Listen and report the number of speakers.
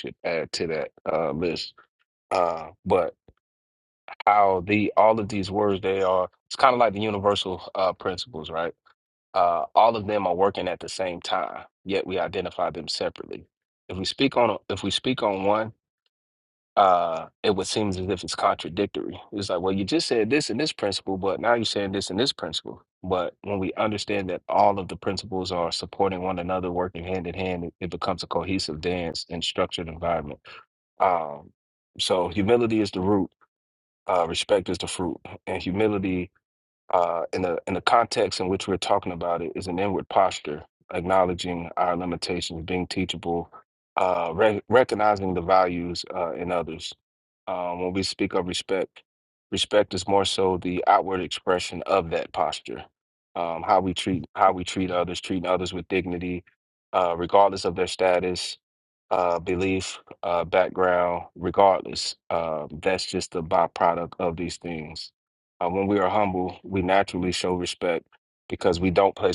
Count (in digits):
1